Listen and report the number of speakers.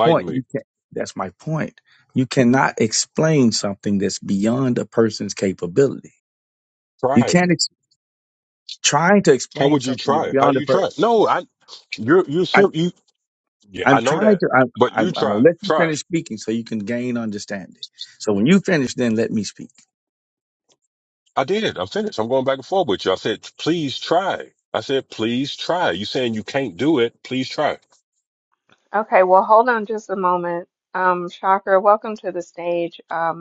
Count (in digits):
3